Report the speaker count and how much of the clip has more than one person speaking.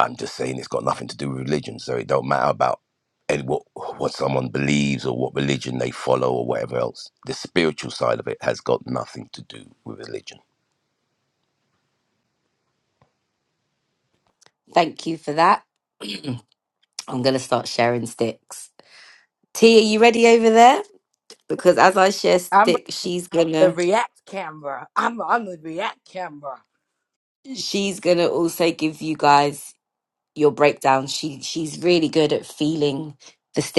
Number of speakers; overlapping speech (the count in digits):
3, about 1%